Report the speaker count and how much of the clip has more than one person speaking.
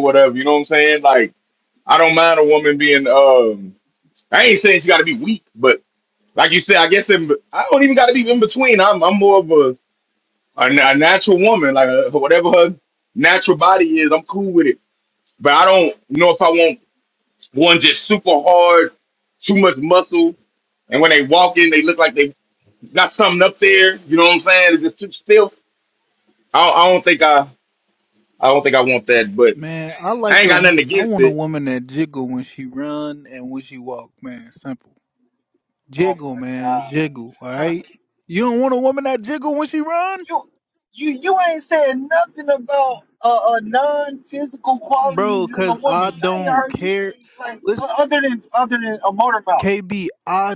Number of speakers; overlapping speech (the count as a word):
three, about 8%